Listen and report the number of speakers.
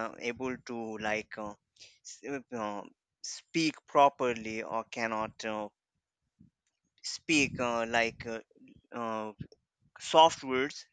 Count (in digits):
1